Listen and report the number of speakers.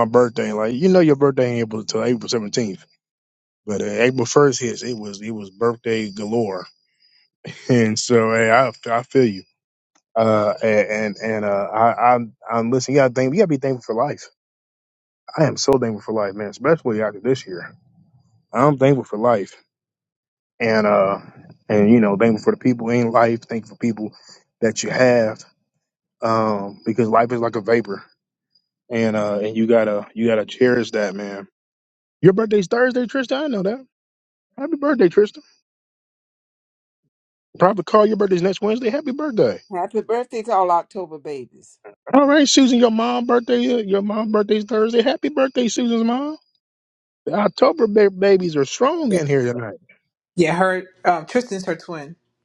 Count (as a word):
three